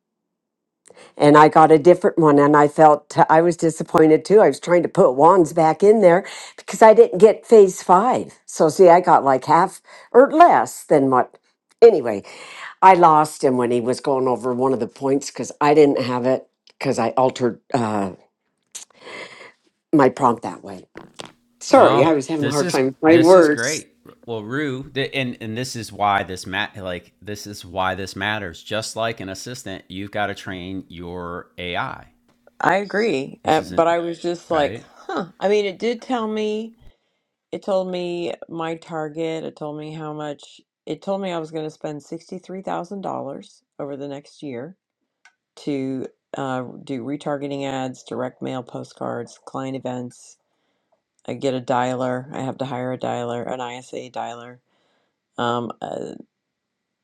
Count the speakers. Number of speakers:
3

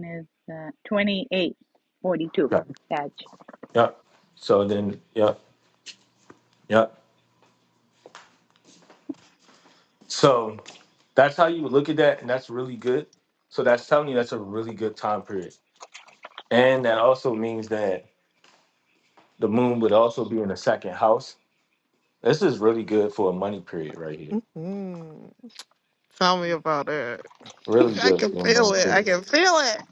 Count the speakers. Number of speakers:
3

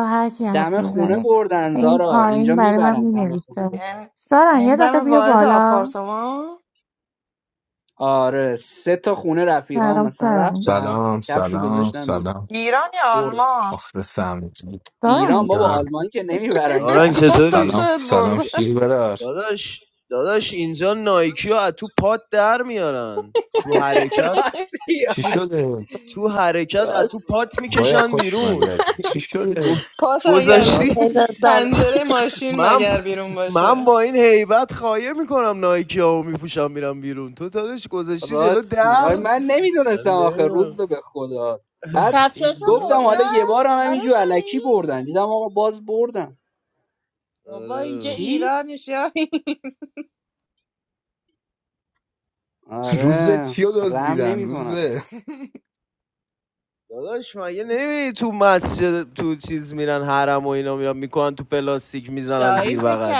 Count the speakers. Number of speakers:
6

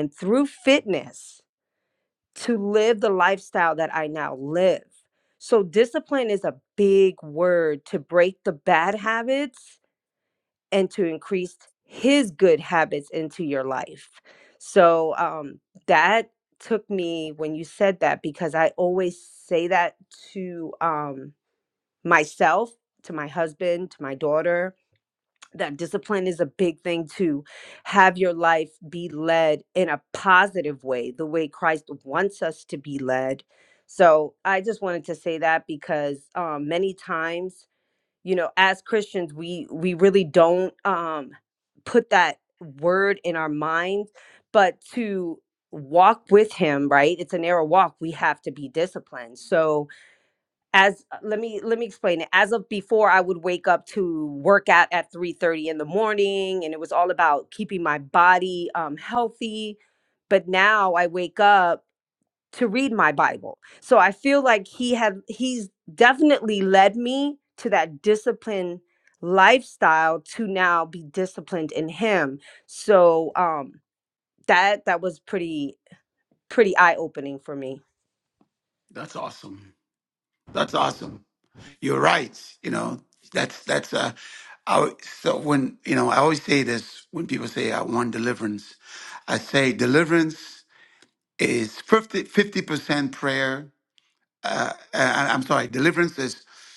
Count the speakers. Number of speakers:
2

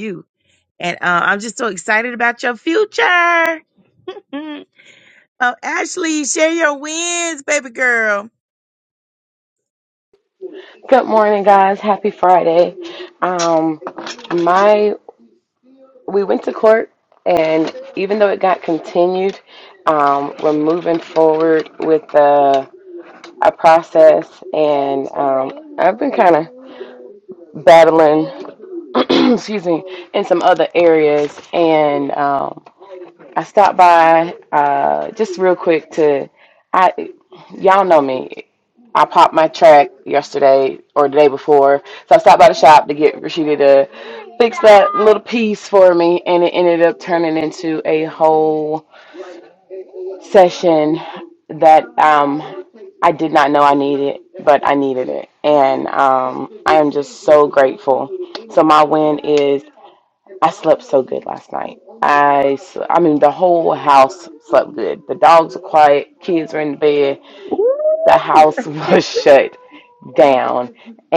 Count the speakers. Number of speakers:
2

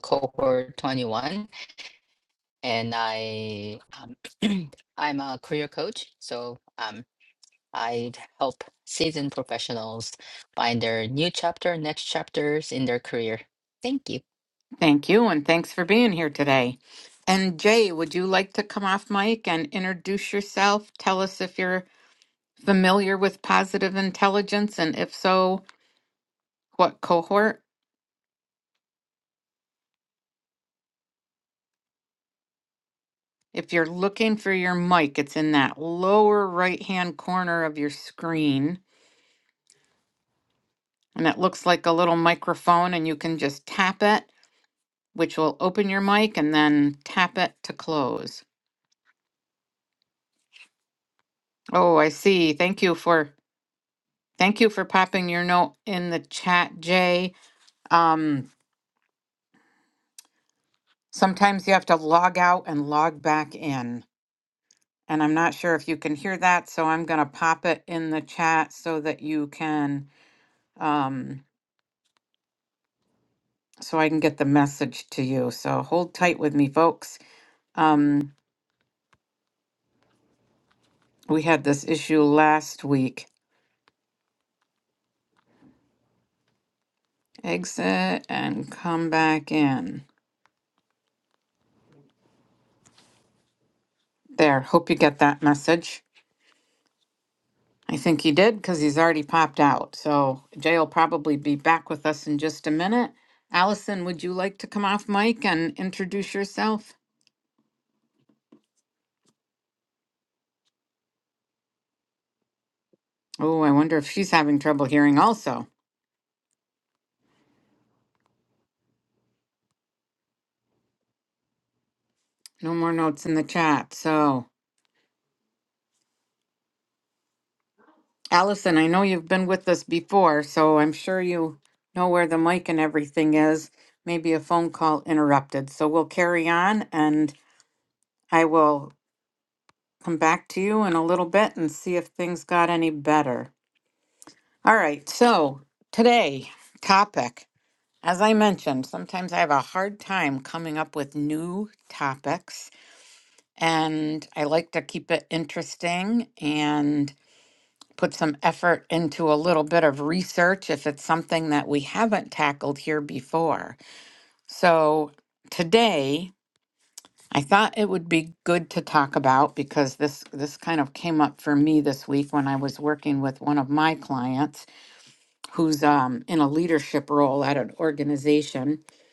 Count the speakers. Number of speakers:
2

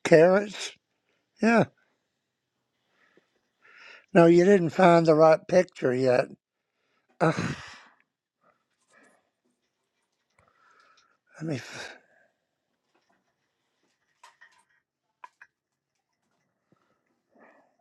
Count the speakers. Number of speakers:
1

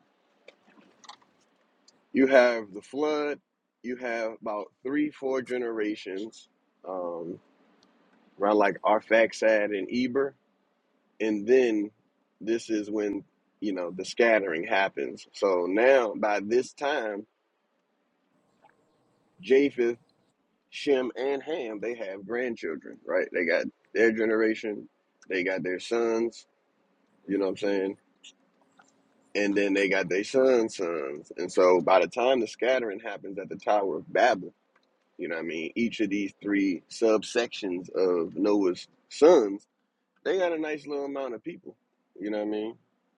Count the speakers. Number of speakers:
1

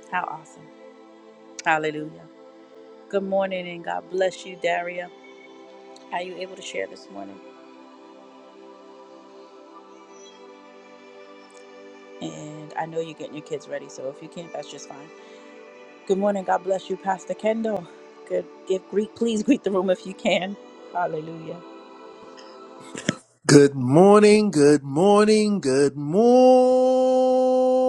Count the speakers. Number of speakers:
2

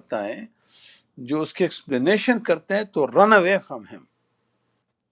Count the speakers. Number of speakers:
1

